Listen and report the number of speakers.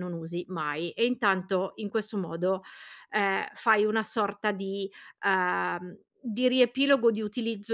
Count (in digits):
1